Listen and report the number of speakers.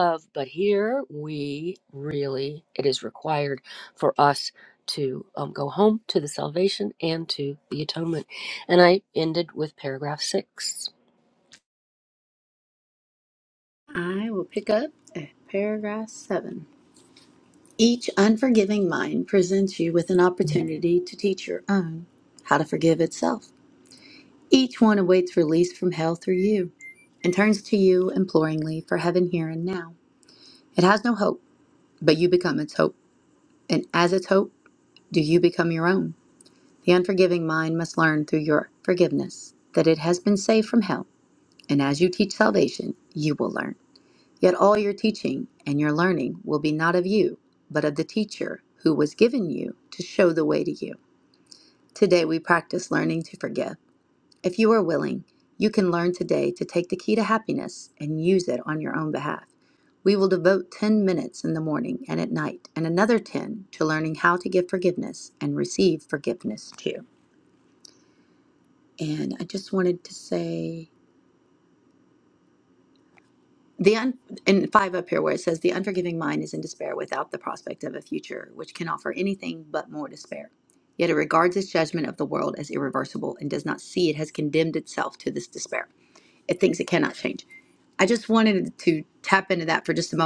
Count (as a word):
two